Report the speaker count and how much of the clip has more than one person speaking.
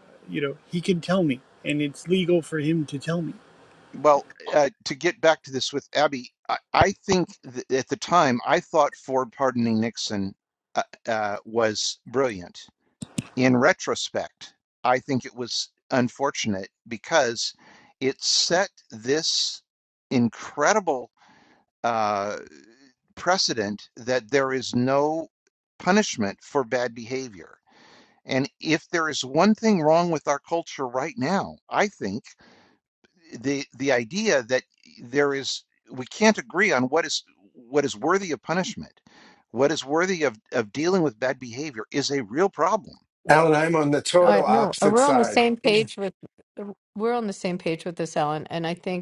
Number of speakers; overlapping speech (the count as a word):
four, about 3%